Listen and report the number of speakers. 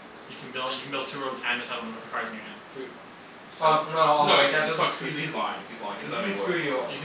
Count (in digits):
3